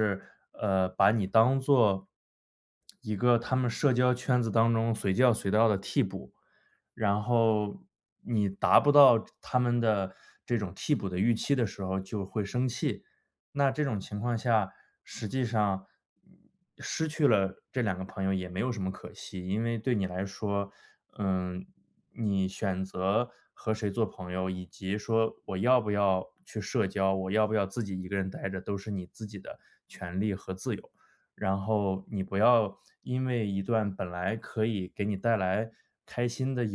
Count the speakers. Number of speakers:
1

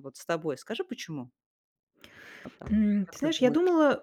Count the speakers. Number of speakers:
2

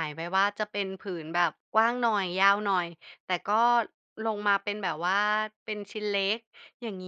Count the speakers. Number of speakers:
1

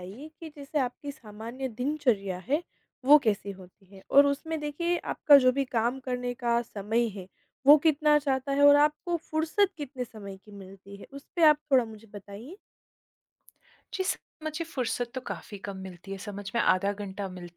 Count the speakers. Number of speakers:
2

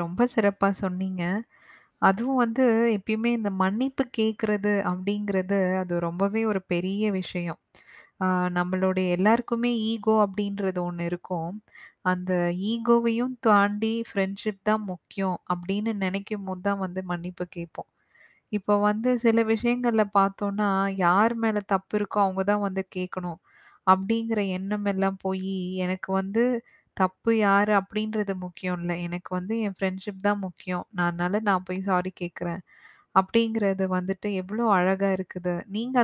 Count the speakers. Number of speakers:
1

